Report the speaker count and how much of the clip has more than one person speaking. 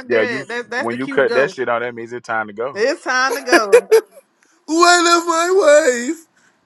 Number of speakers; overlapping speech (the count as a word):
three, about 18%